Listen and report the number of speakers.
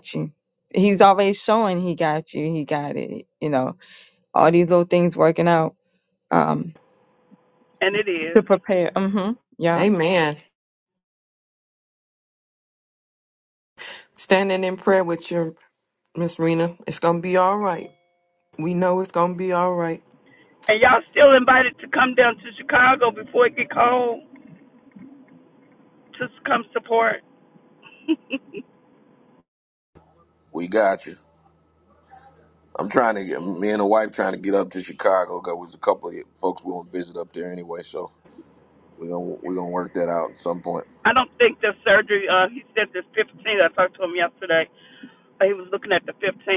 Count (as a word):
four